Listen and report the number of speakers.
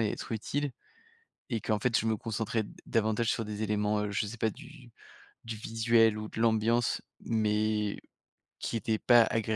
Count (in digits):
1